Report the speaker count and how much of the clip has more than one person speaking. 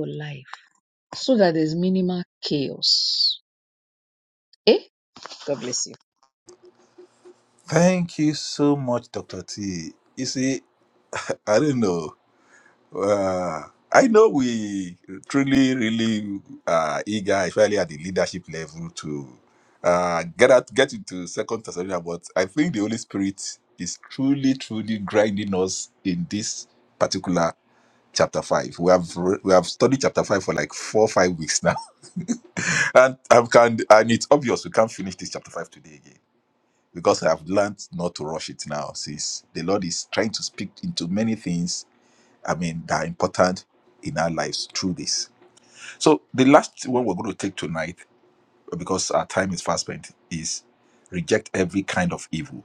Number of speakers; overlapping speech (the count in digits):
2, no overlap